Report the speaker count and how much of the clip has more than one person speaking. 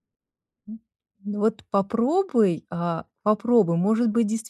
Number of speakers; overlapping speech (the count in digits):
1, no overlap